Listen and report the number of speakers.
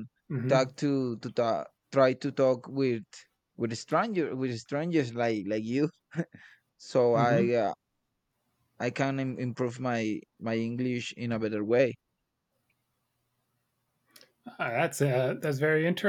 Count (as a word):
two